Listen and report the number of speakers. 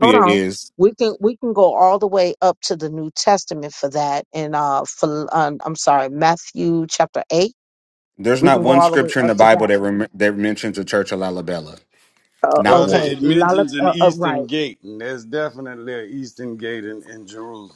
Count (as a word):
three